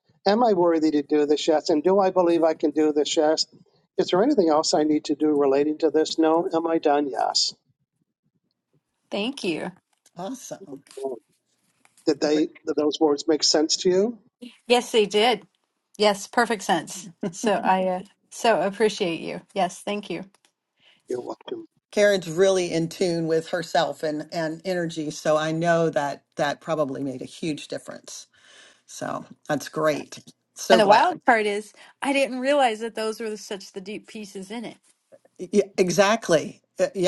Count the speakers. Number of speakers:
three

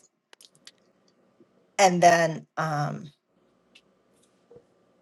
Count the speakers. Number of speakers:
one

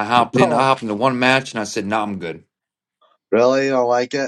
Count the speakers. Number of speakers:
two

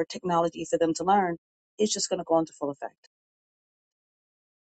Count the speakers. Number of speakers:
one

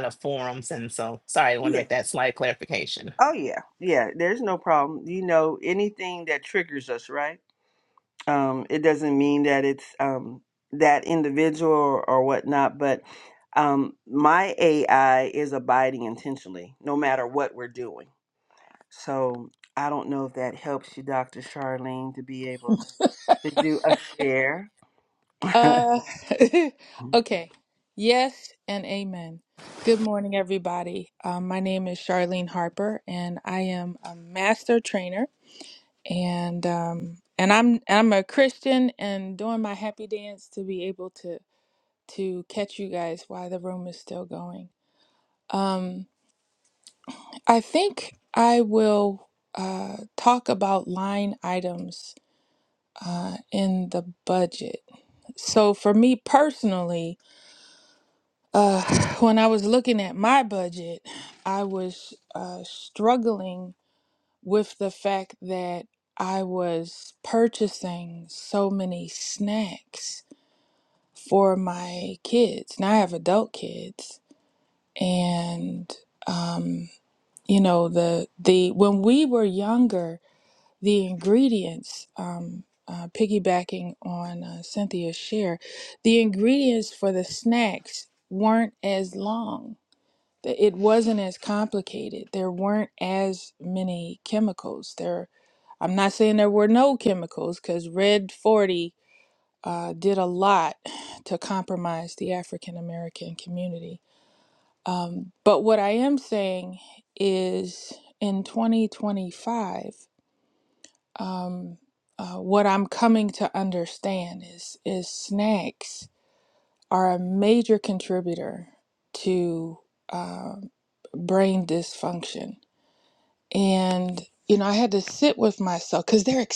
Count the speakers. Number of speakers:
three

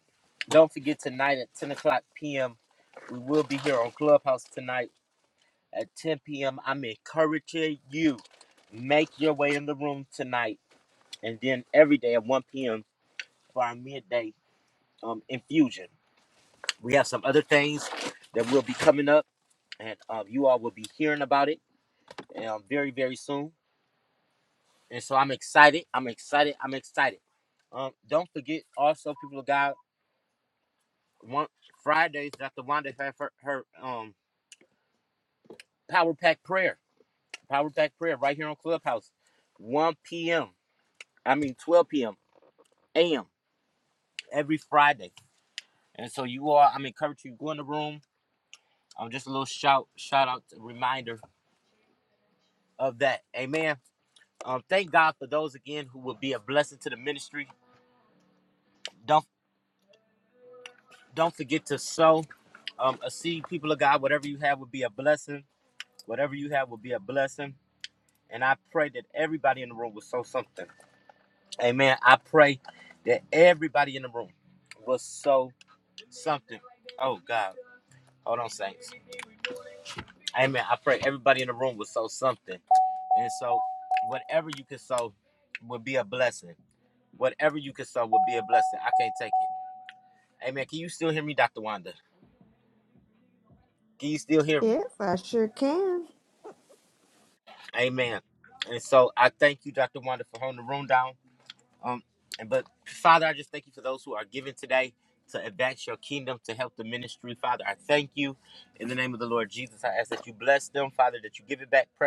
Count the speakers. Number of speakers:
two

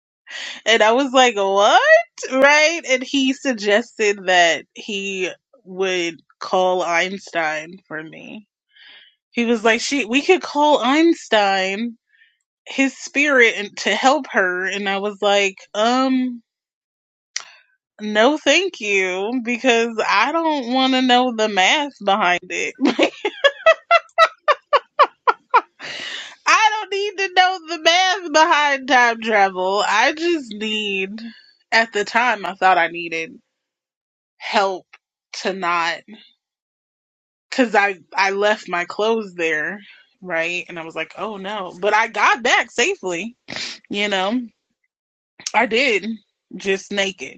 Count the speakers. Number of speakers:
one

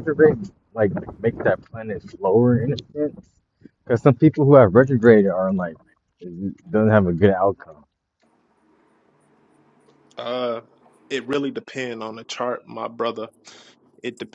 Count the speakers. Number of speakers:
two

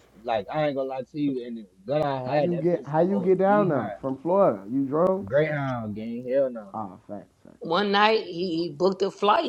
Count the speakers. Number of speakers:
three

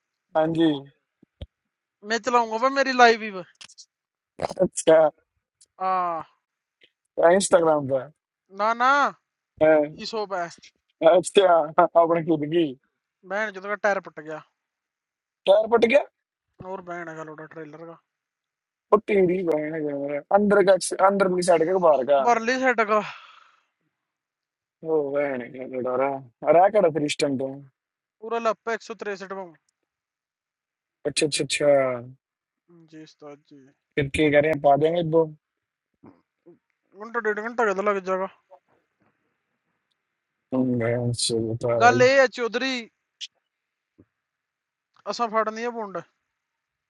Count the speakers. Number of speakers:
two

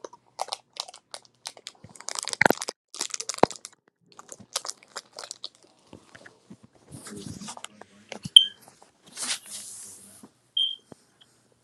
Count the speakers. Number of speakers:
zero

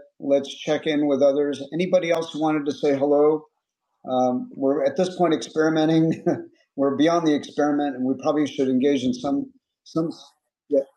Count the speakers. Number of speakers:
one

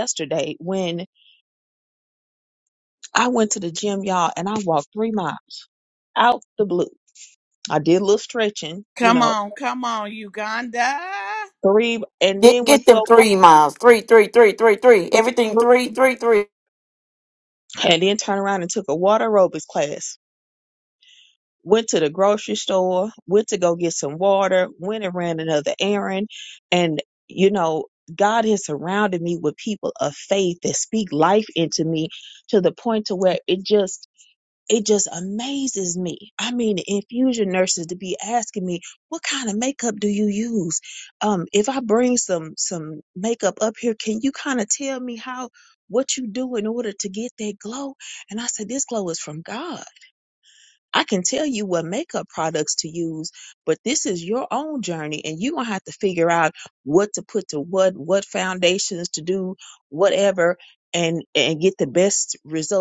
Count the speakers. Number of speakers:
three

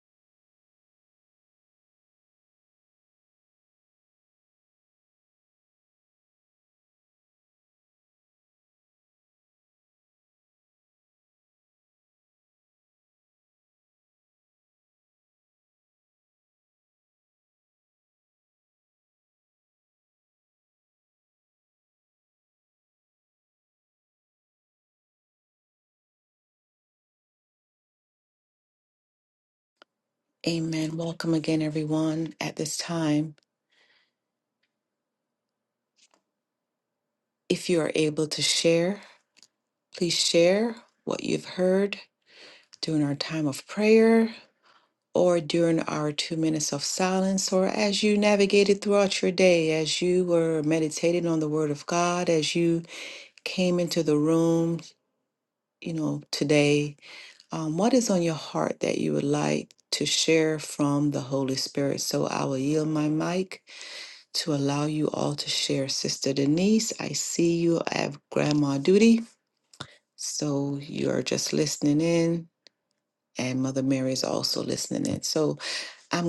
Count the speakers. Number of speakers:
one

